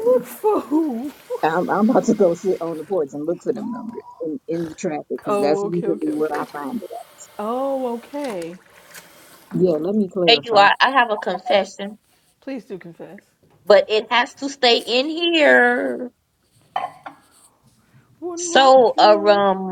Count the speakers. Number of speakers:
3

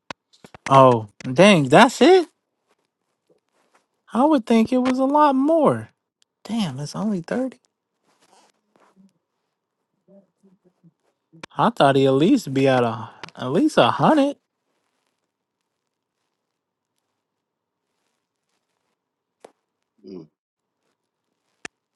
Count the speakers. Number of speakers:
1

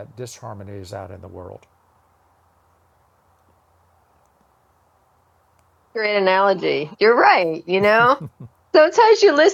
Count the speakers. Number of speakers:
2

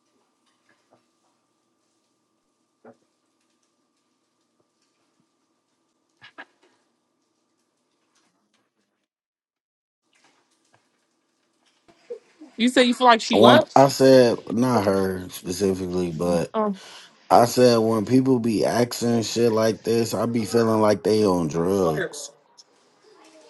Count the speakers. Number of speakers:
2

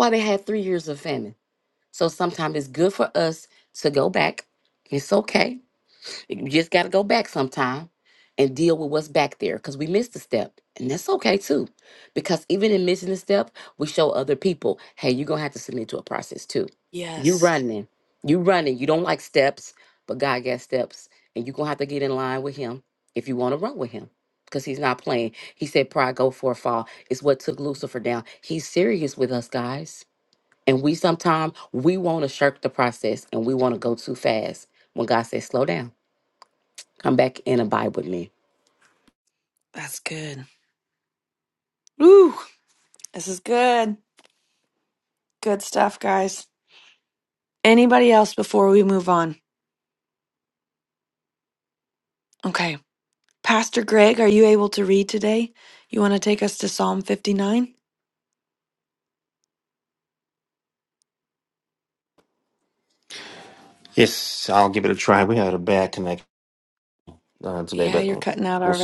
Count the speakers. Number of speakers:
3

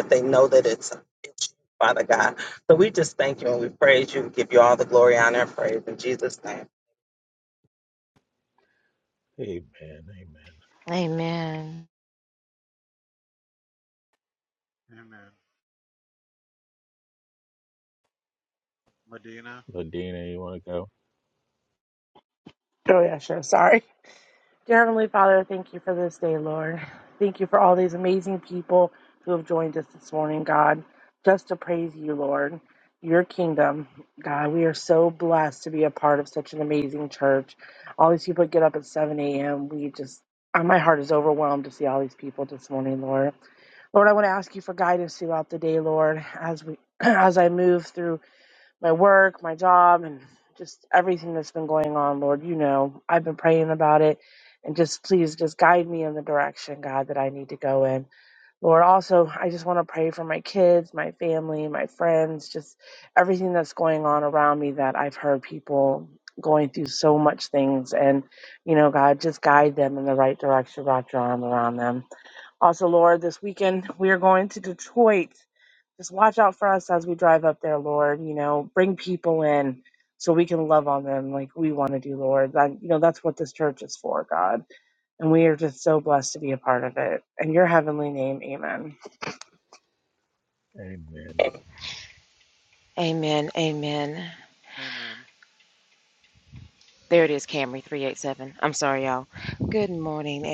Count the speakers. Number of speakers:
5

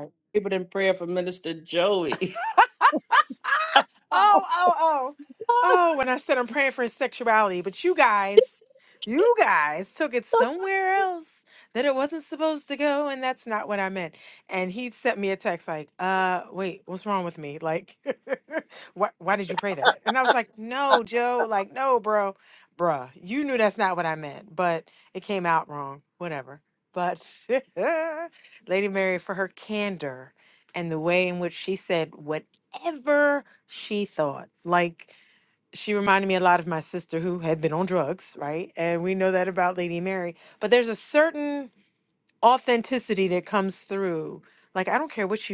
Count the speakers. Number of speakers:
2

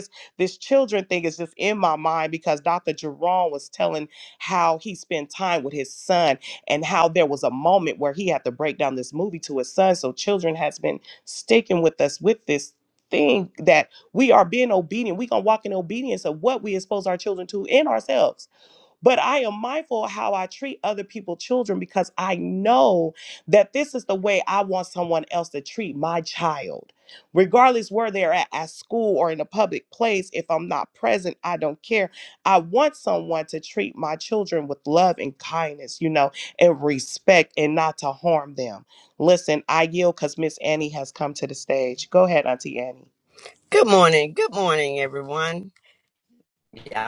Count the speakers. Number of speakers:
2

